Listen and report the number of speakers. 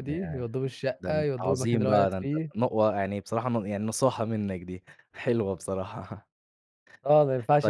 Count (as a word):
two